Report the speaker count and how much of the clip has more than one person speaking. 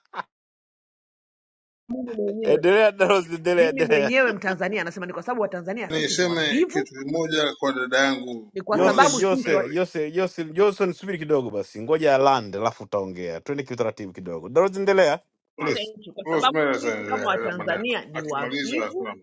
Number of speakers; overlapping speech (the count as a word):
three, about 30%